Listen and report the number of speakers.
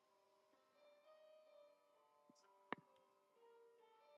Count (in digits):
0